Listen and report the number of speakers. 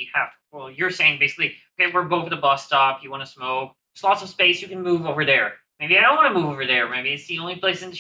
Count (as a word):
one